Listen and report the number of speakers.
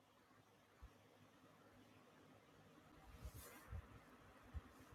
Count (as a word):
zero